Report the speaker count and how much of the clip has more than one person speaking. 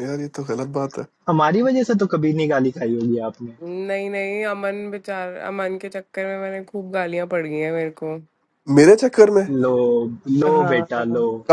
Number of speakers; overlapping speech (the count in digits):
3, about 7%